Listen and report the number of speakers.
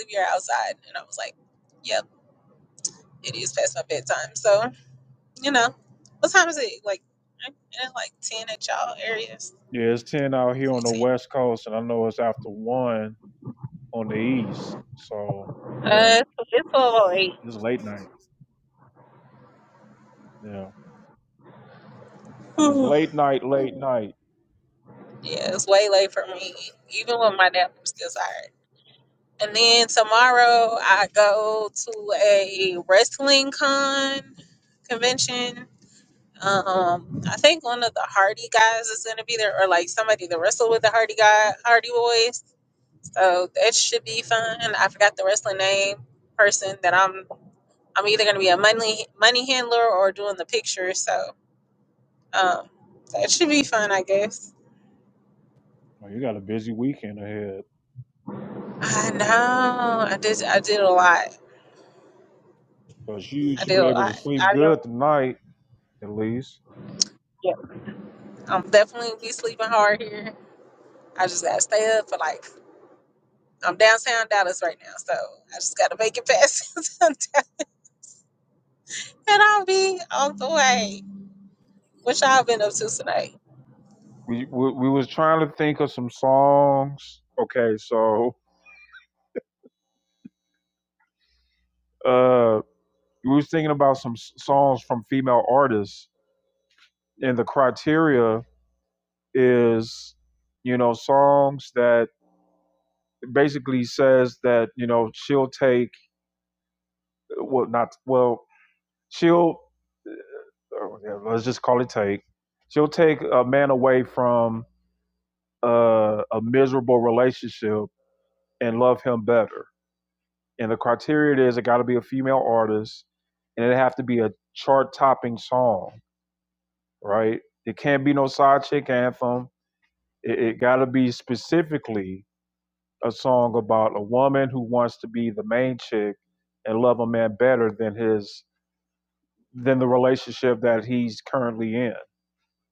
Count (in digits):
2